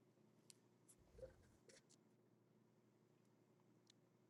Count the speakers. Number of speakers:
0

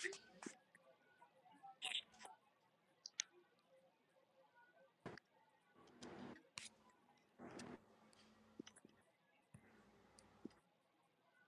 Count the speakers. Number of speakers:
0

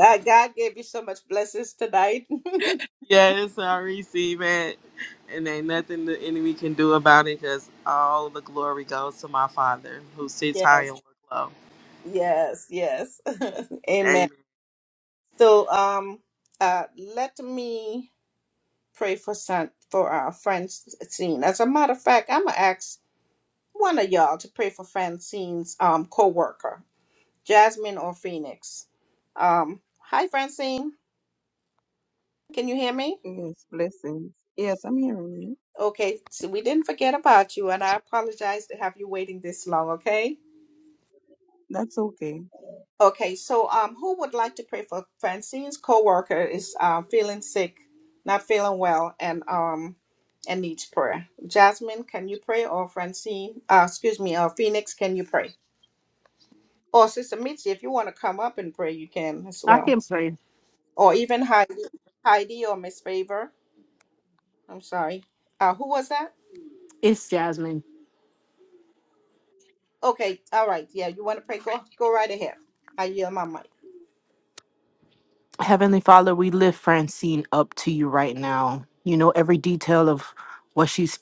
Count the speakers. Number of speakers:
4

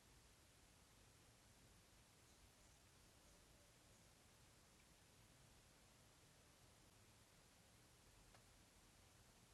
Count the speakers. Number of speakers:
0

